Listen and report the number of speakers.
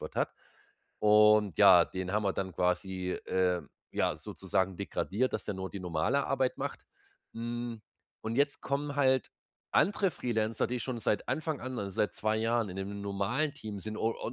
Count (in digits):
1